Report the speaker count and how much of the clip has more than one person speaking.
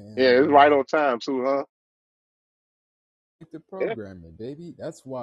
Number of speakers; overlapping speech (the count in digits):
2, about 13%